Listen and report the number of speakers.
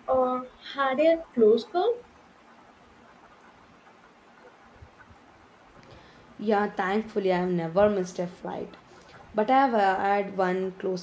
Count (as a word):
two